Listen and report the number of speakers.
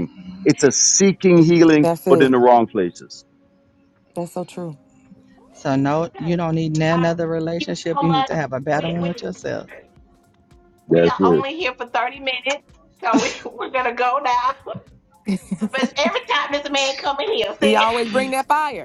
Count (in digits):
4